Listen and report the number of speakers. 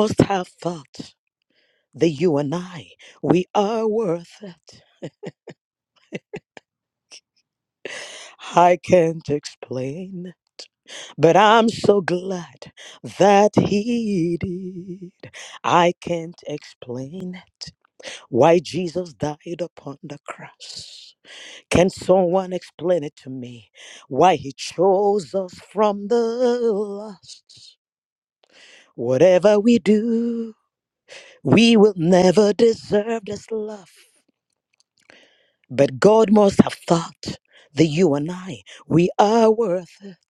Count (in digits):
1